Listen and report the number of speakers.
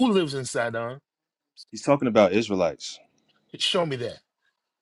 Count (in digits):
2